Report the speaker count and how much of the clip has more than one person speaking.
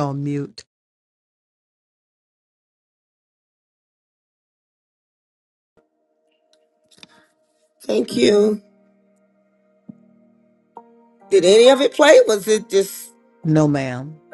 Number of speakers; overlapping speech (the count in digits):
2, no overlap